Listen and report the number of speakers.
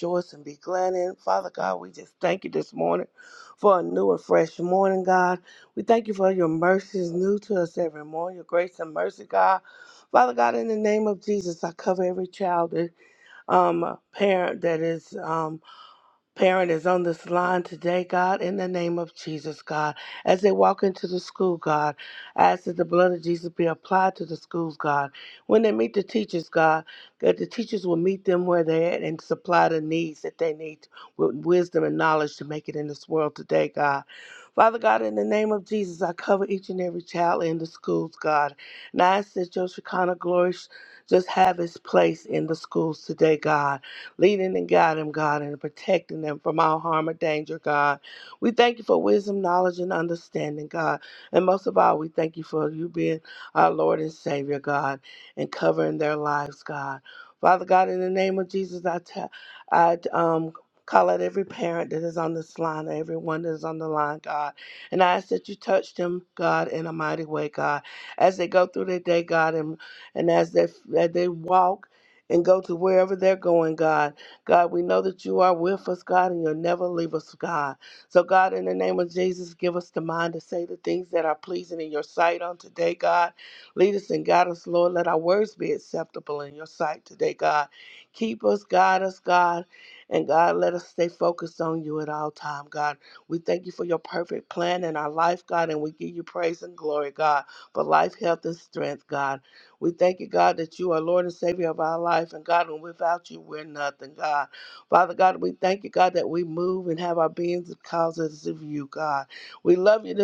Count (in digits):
1